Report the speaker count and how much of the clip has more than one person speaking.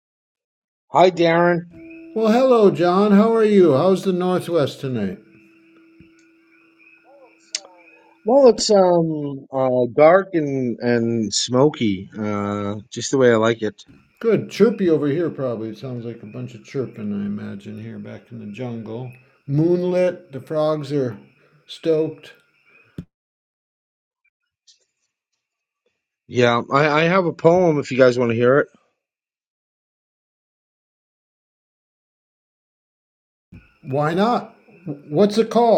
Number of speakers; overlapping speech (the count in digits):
2, no overlap